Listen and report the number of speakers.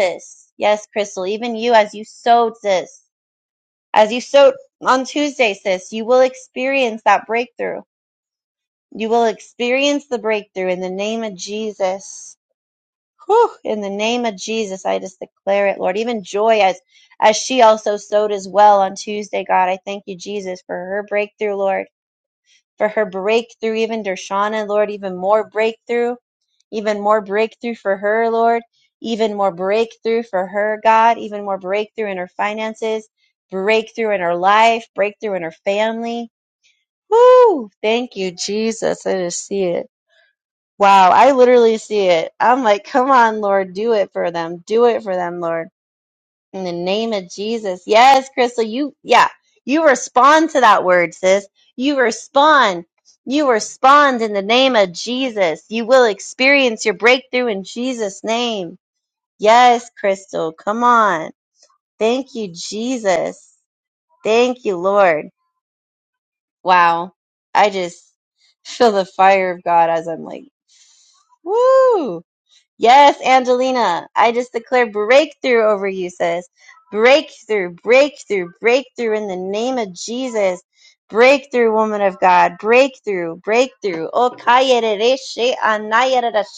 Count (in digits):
1